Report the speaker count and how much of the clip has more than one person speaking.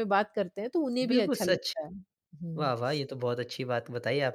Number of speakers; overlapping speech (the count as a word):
two, about 18%